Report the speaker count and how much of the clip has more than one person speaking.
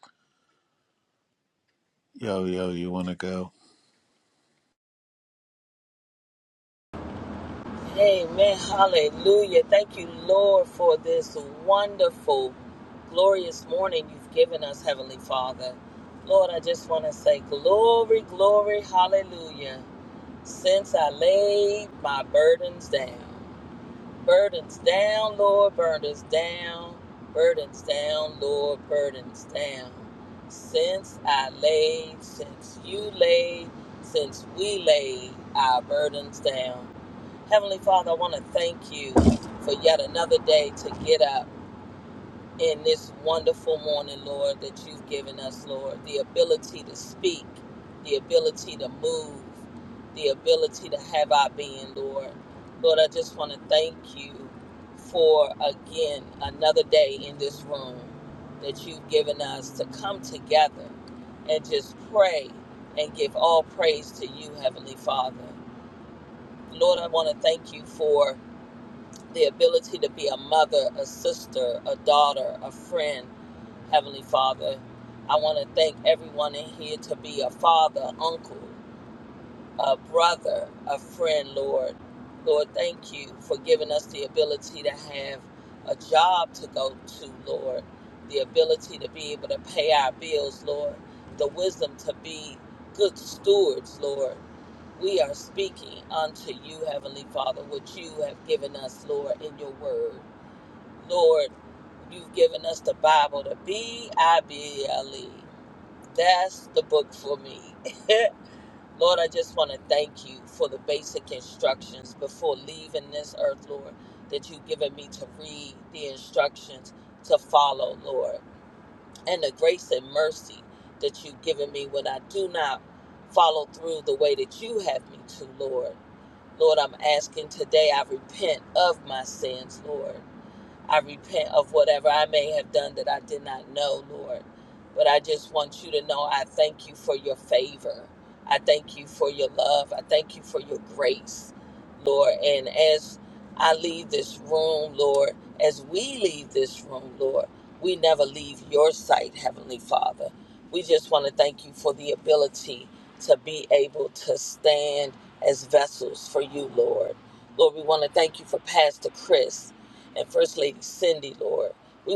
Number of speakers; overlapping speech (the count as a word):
two, no overlap